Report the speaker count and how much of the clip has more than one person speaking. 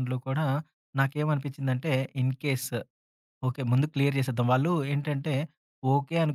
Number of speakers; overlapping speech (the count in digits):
1, no overlap